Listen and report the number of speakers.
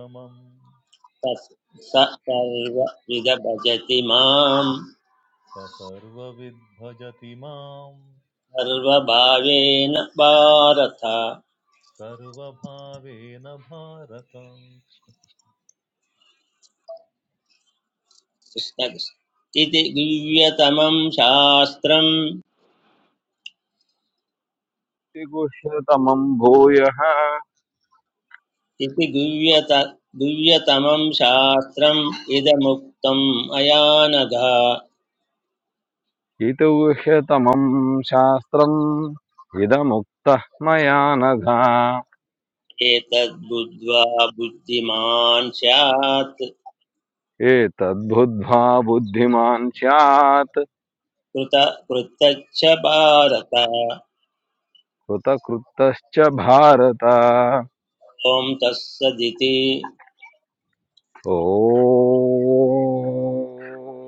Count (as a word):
three